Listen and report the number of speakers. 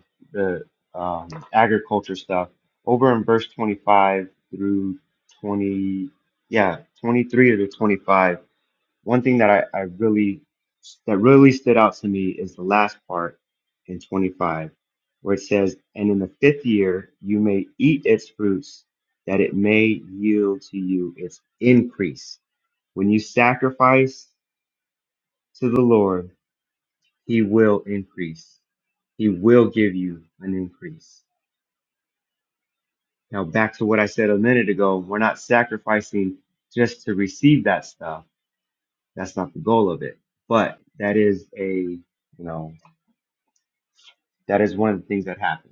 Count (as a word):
one